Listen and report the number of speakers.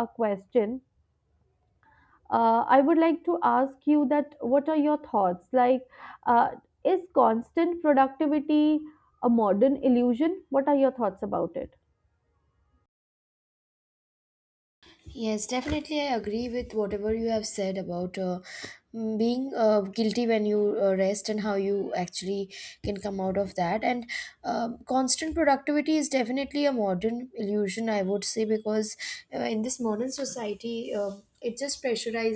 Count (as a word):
two